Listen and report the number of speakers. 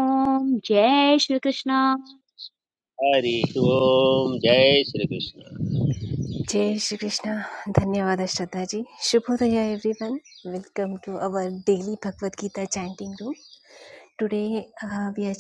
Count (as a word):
three